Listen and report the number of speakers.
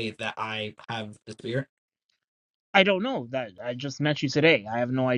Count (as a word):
two